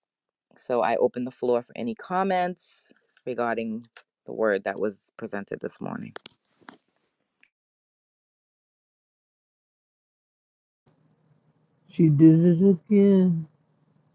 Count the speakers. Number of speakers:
2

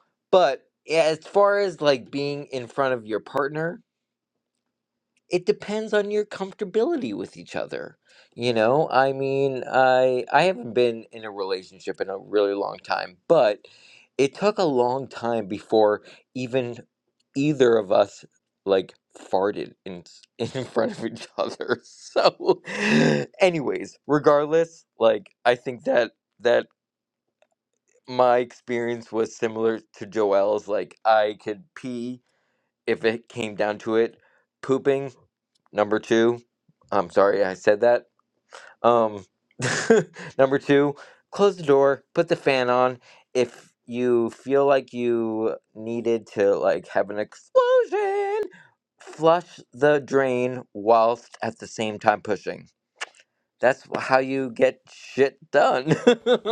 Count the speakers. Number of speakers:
1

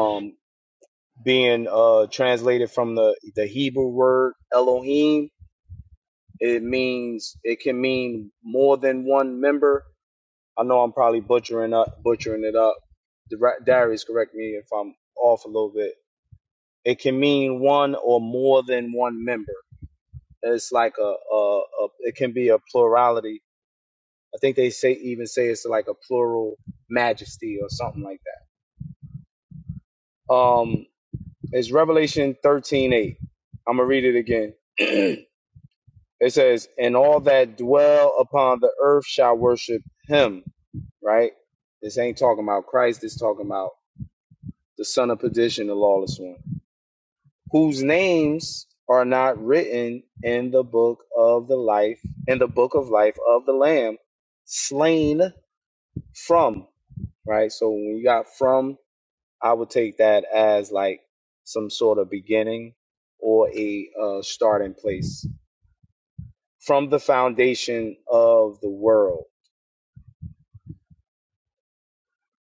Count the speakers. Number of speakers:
1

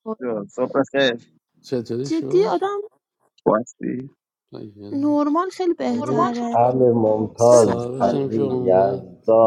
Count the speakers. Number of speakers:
4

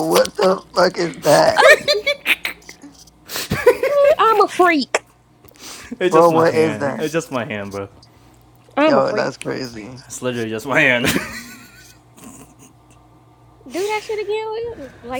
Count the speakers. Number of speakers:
3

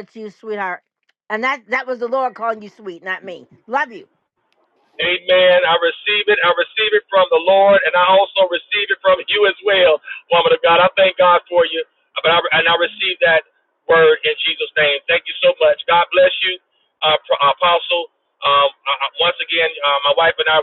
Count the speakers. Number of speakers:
2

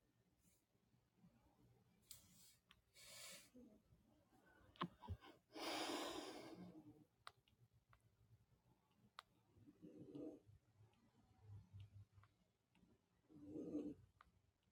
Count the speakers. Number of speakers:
0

